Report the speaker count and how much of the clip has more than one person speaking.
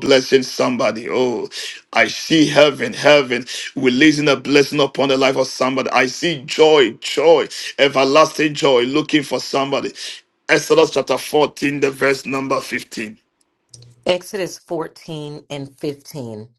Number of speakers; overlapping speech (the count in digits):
2, no overlap